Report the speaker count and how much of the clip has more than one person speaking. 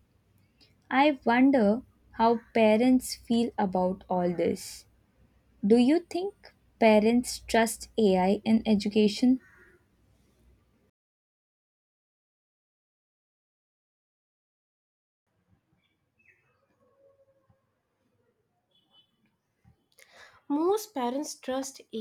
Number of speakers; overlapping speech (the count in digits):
2, no overlap